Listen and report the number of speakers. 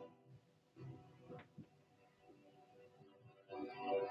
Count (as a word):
zero